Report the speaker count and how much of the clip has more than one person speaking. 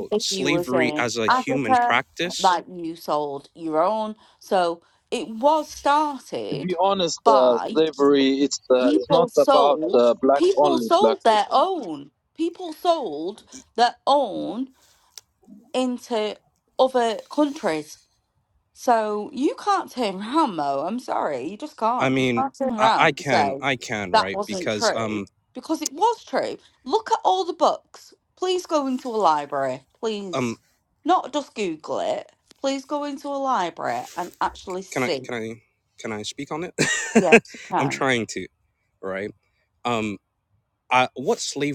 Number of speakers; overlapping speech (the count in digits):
3, about 21%